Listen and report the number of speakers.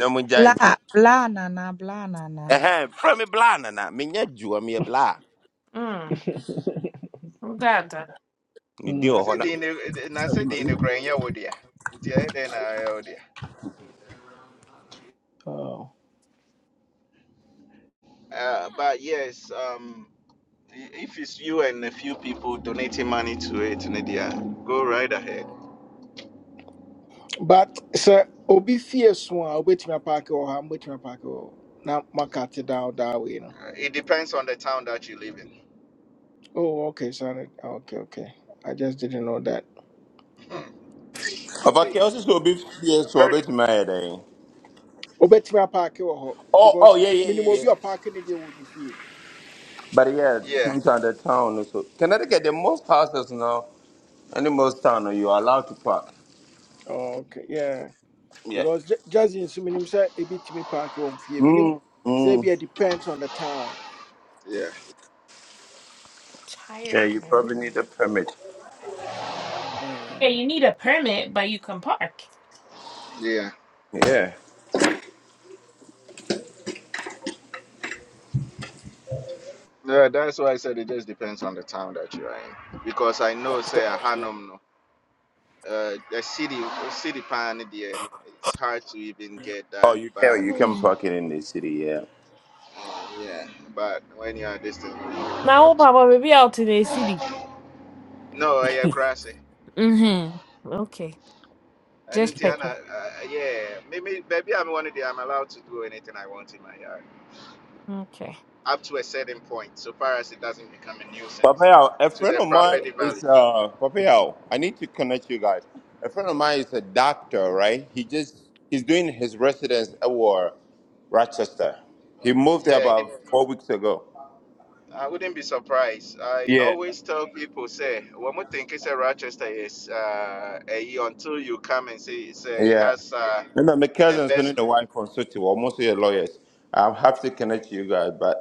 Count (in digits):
5